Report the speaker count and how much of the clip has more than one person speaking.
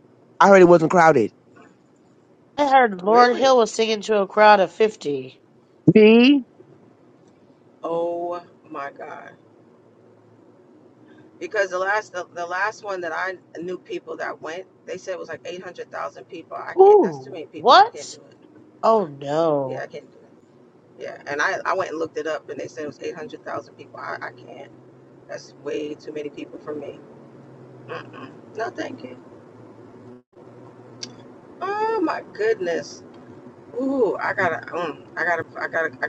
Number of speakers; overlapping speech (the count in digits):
3, about 5%